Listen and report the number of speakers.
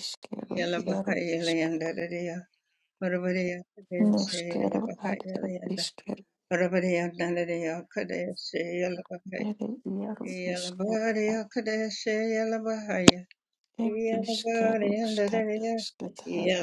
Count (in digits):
2